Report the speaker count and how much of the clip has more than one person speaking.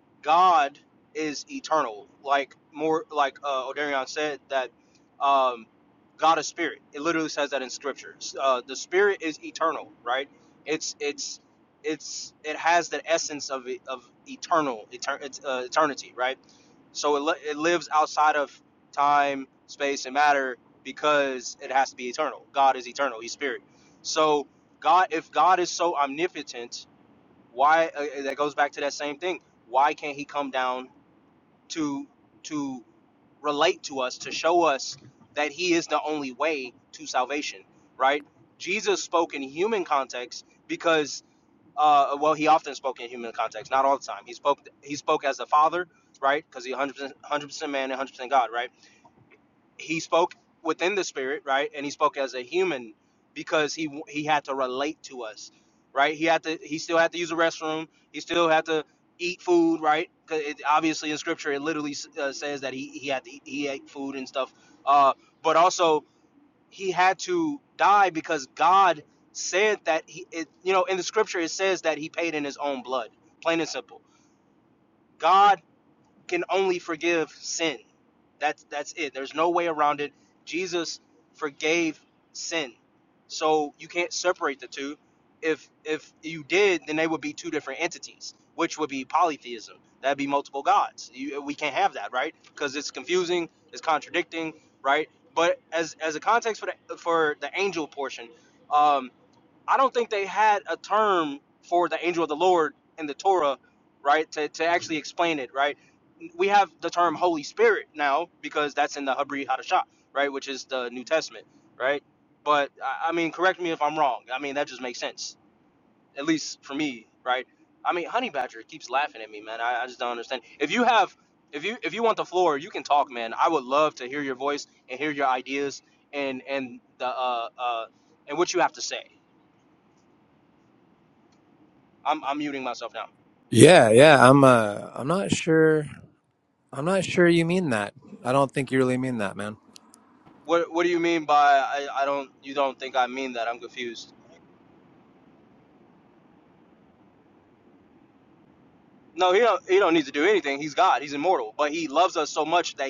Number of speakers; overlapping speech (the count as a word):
two, no overlap